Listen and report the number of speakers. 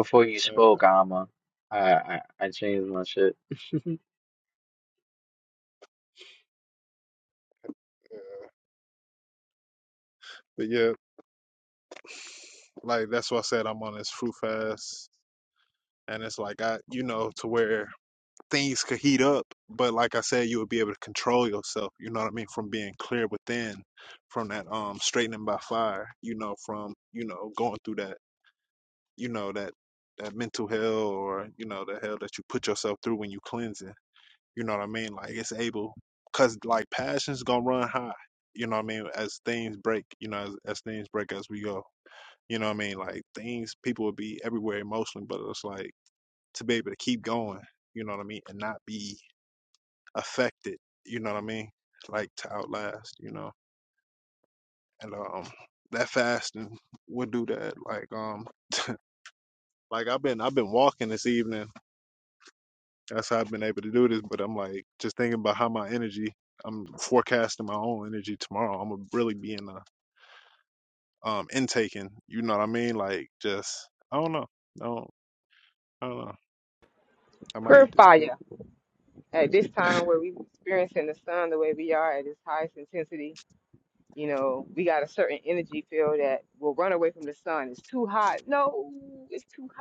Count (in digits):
3